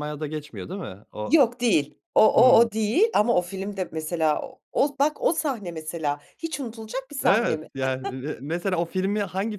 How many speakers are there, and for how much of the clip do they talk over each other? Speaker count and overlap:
2, about 9%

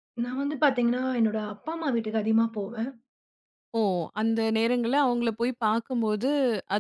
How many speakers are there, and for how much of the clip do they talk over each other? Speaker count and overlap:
2, no overlap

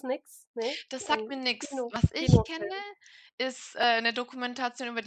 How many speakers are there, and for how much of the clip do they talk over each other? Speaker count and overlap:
2, about 38%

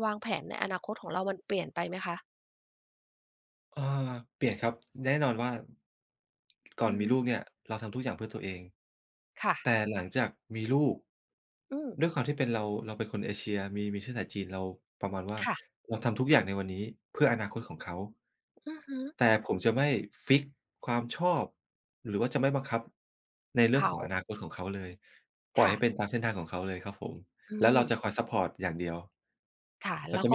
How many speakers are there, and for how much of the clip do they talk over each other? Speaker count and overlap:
2, about 5%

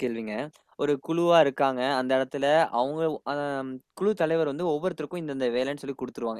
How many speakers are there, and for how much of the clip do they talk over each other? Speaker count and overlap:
1, no overlap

